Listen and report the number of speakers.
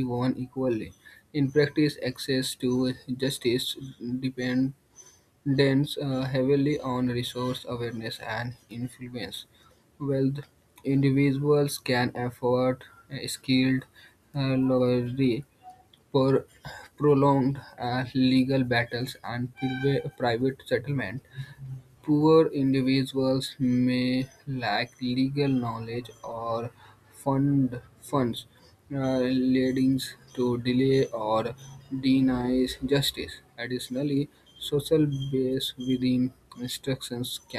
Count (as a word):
one